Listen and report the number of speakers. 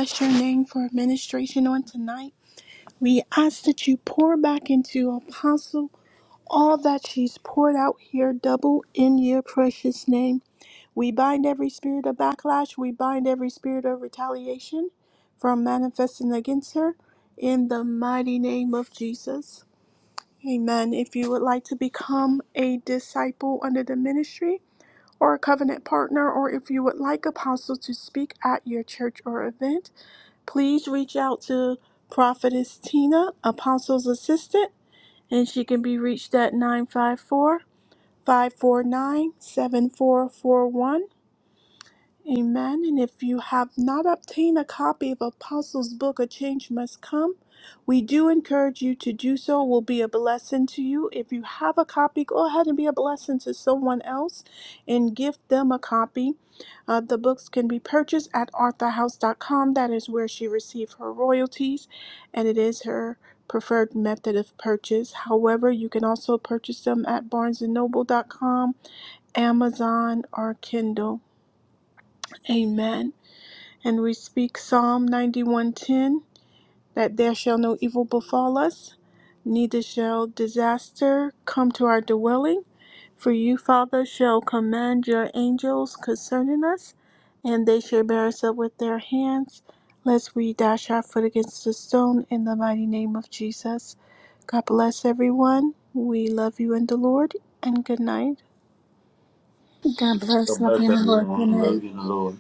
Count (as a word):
three